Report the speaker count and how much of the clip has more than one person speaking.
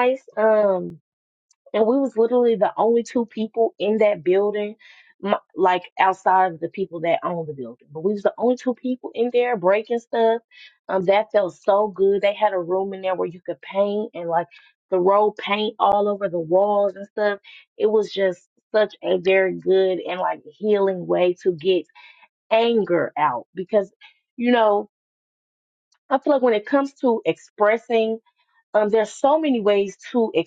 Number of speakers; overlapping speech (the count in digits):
1, no overlap